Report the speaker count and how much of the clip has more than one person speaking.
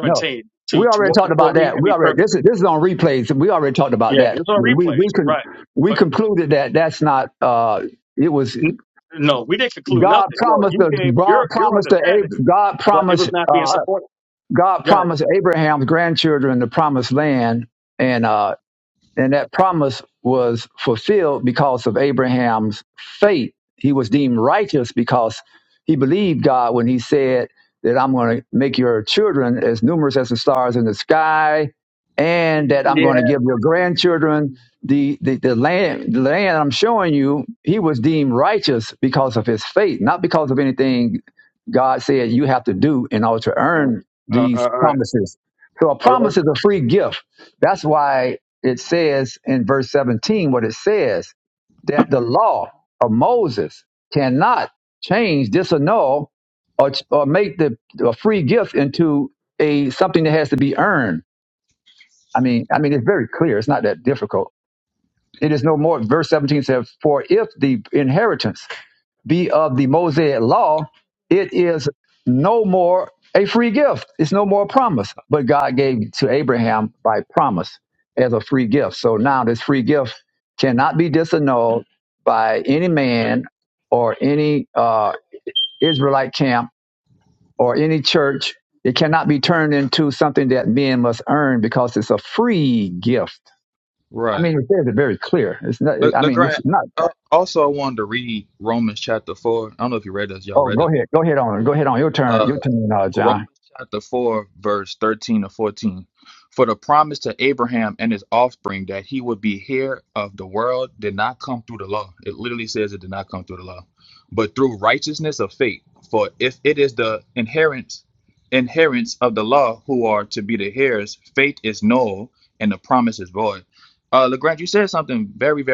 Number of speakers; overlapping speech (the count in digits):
3, about 8%